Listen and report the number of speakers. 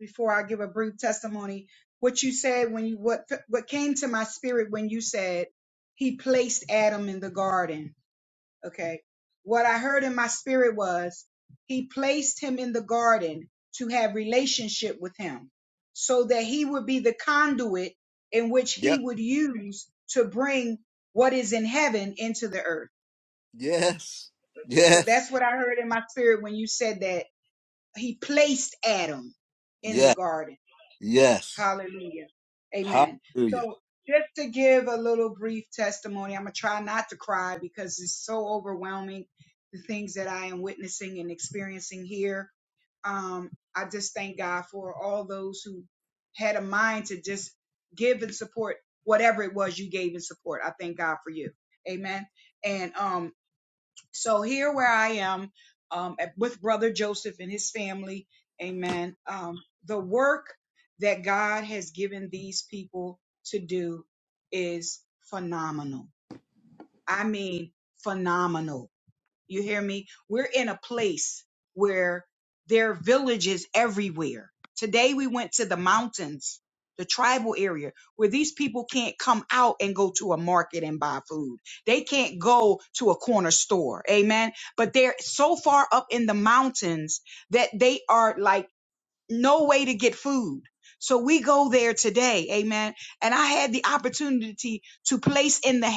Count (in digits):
2